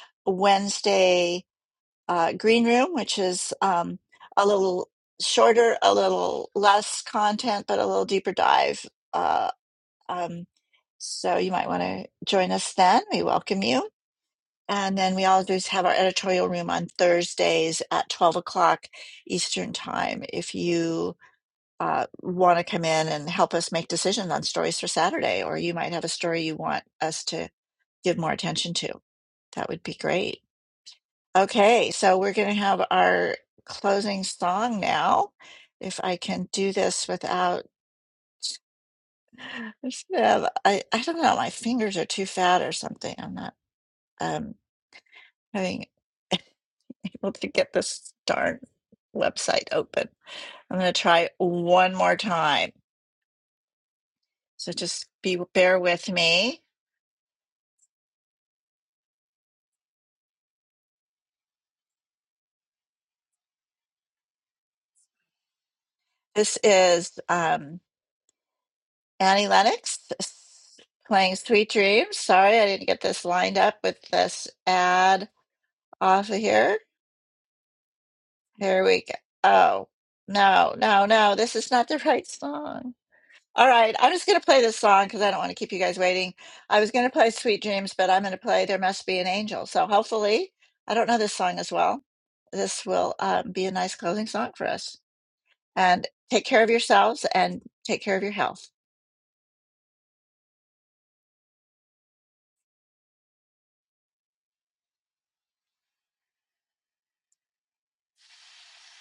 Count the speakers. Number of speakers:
one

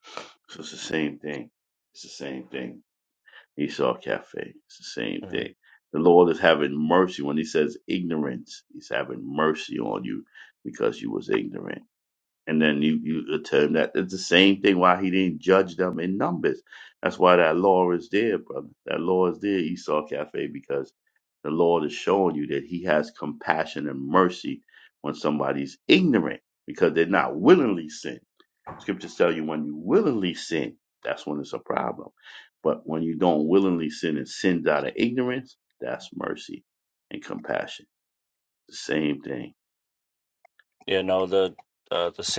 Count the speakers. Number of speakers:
two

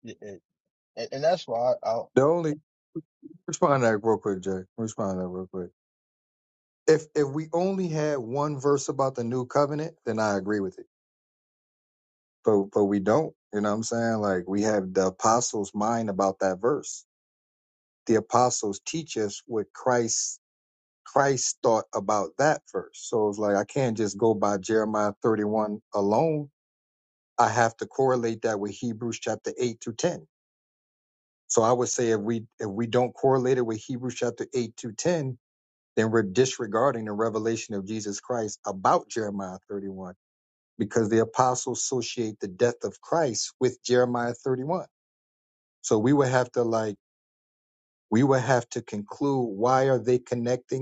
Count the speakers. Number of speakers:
two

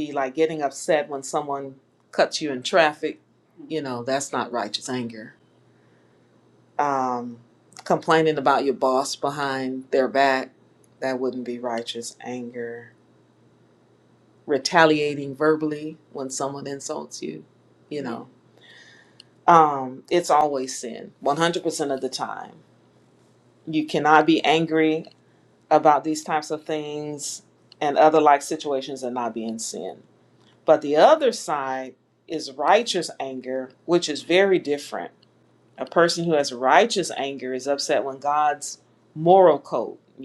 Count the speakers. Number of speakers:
one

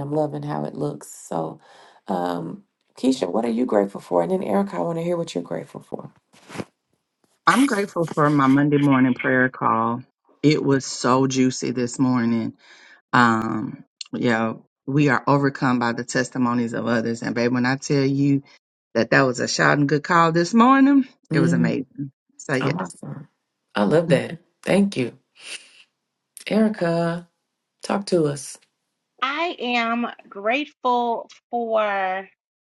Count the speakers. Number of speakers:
three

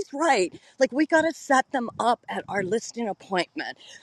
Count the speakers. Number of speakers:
one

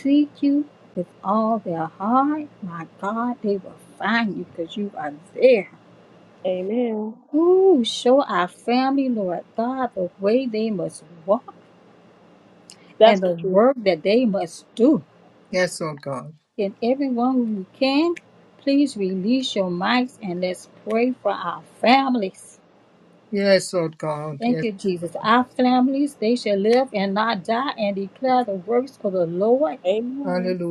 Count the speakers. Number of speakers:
three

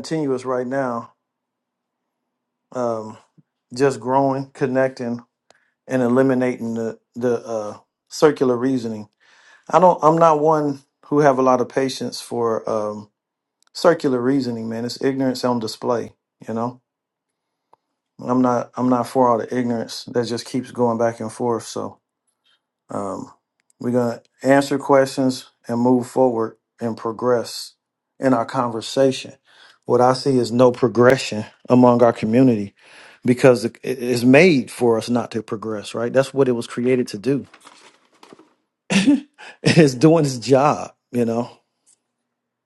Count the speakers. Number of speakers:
one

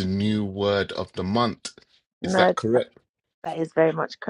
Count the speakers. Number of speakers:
two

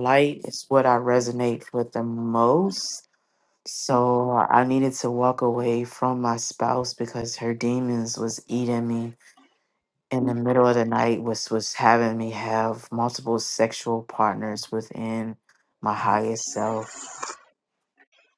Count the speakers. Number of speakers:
one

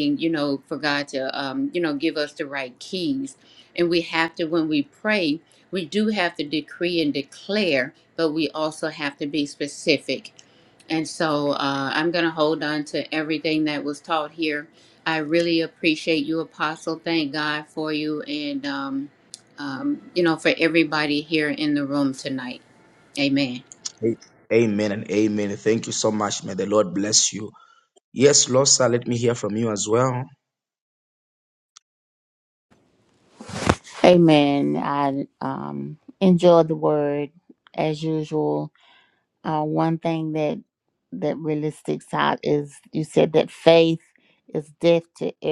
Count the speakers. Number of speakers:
three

